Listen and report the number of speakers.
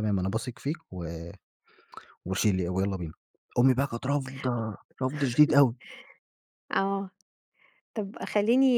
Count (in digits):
2